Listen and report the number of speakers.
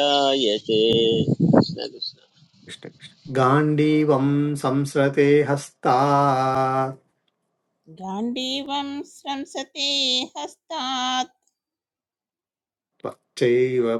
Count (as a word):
three